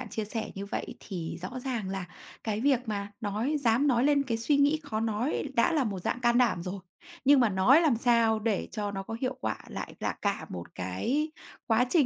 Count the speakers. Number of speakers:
1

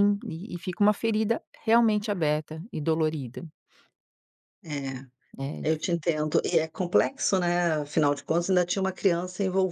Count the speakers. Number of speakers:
2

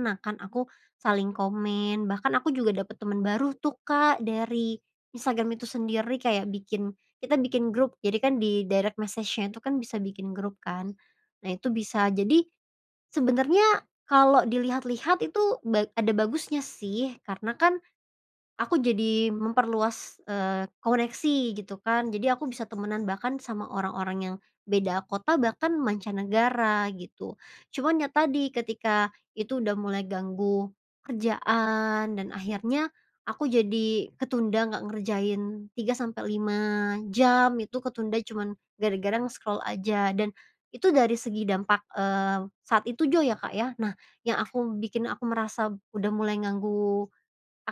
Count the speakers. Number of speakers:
1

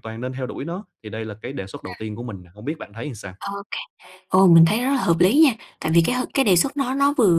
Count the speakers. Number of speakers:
2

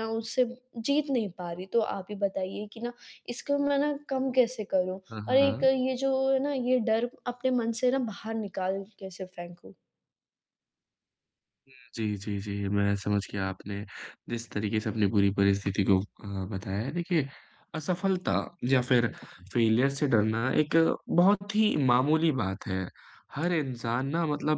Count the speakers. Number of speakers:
2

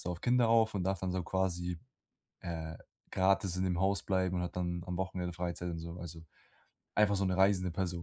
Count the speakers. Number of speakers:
1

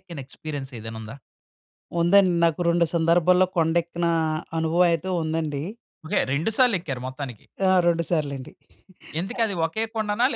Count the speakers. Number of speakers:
2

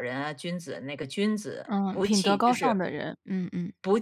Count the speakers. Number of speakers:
2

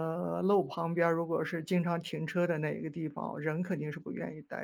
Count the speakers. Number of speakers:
1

